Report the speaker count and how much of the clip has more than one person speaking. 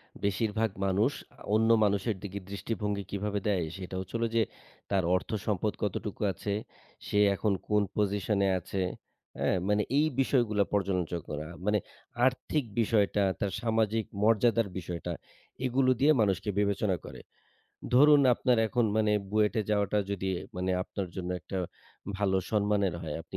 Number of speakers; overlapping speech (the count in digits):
1, no overlap